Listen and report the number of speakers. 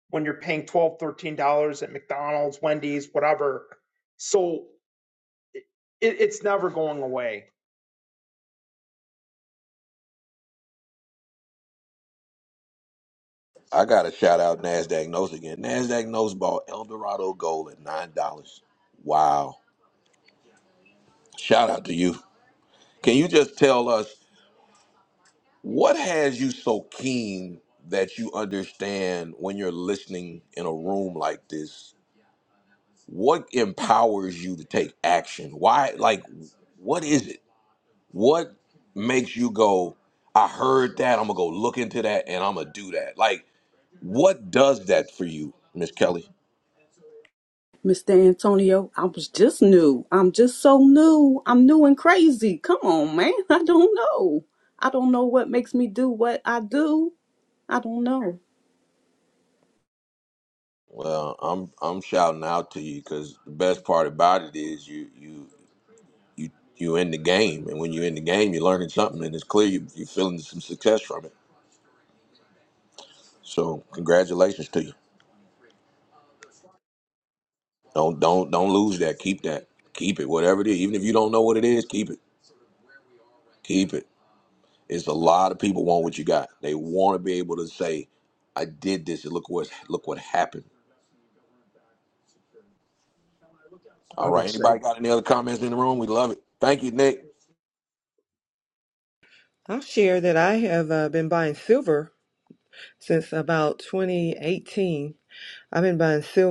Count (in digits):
4